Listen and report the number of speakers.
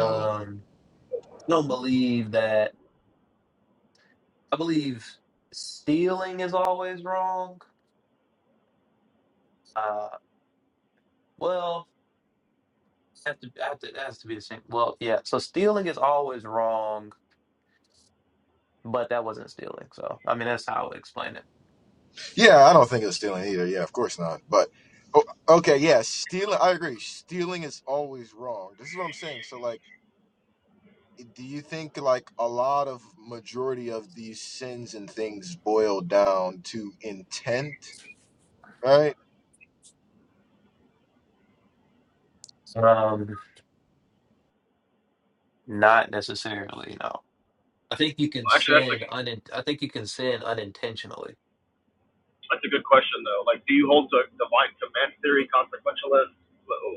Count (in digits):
3